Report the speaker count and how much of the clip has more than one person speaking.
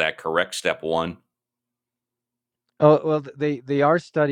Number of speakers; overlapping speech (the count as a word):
two, no overlap